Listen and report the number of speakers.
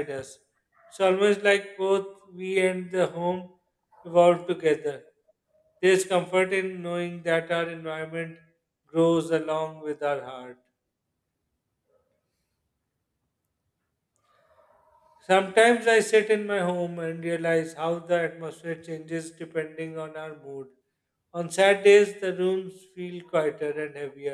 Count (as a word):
one